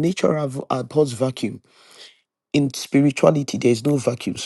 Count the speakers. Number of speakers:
one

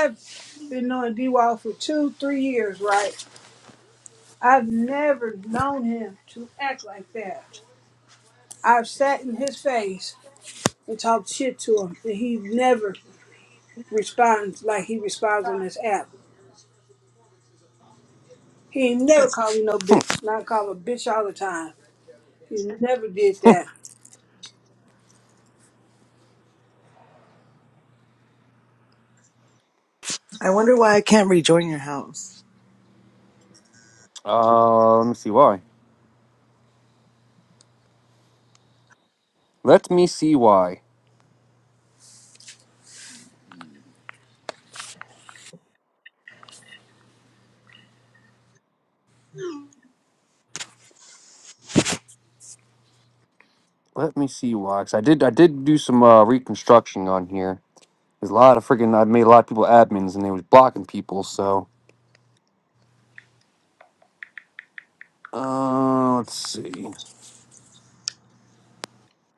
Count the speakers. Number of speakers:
three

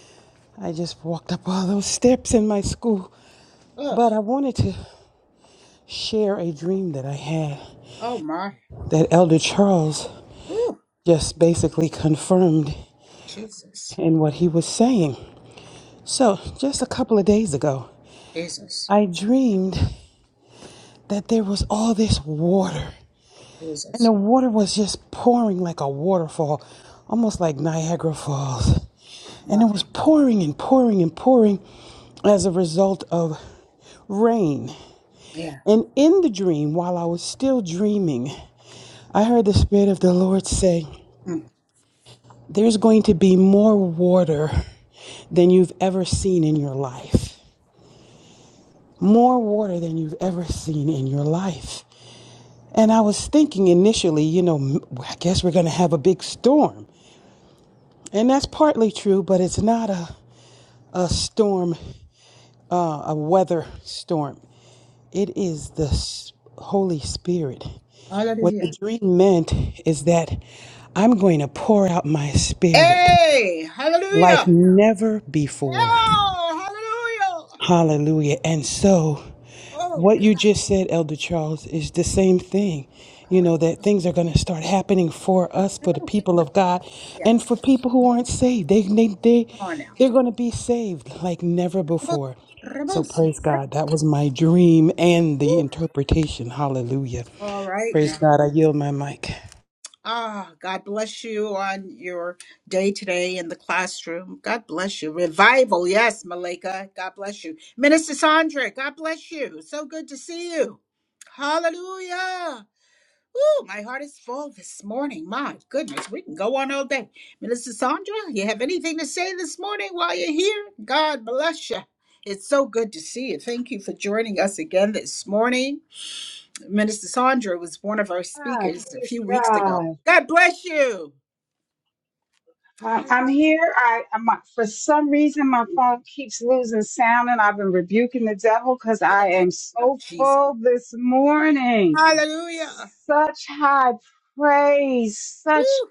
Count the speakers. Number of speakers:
three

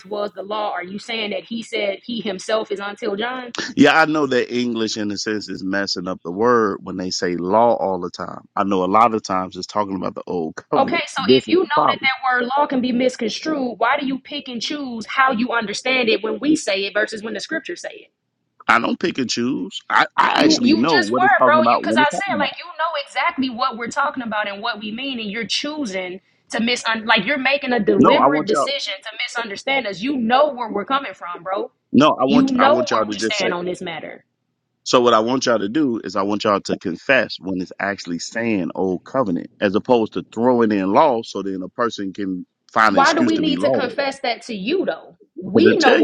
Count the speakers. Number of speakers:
two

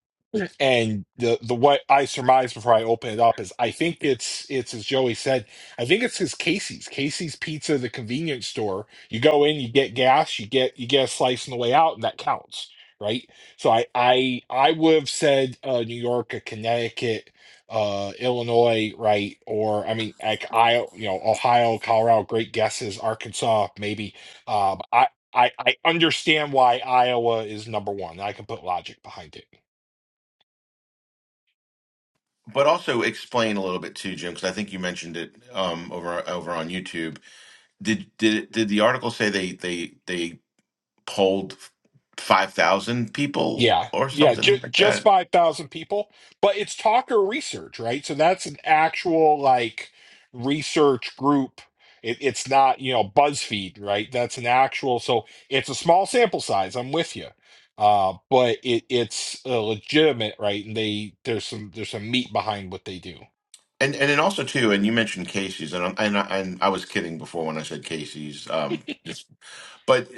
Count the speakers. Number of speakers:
two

